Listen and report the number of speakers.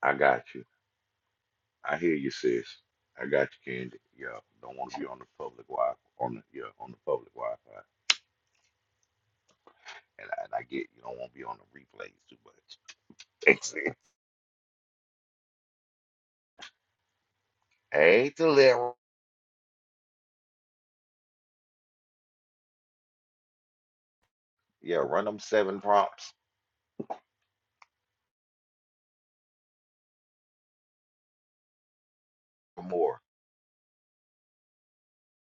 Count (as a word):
one